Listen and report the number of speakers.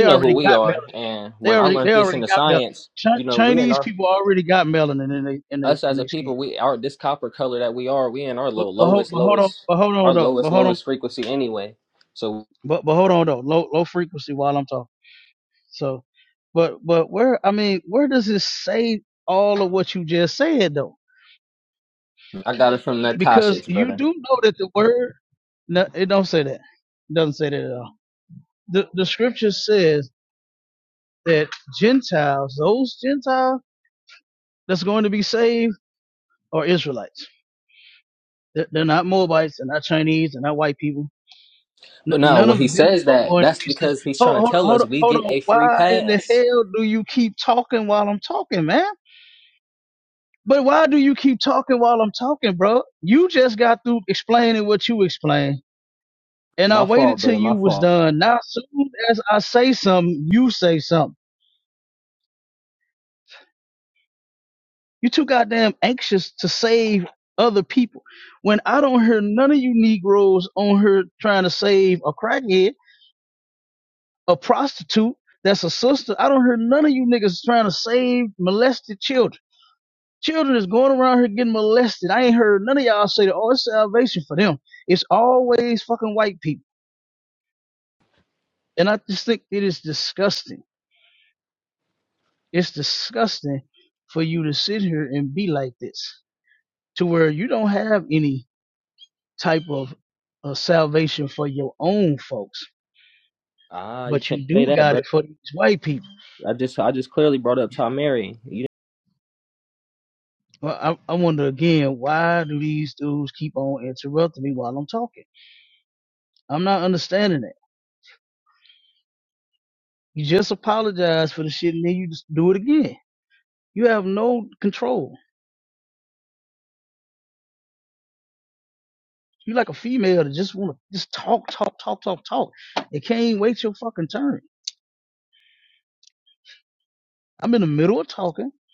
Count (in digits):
2